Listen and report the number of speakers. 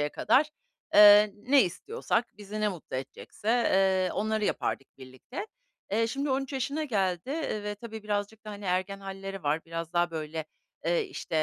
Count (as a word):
one